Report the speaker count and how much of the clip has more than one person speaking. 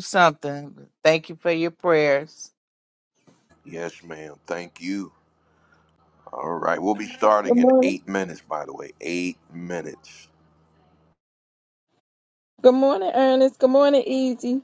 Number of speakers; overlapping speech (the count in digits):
3, about 3%